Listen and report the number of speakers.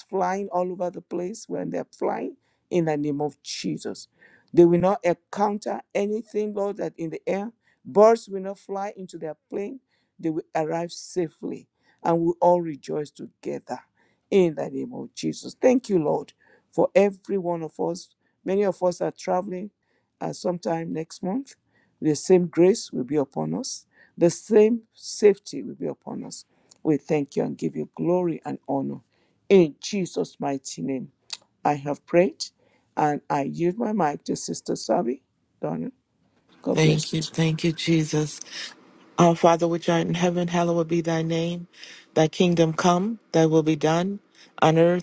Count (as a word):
two